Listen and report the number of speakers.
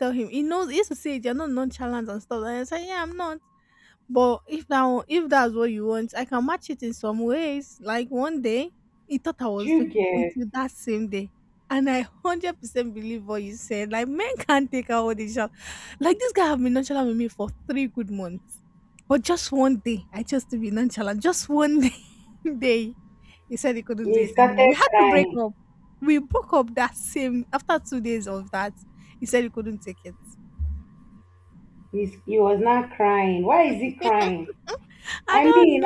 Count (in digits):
2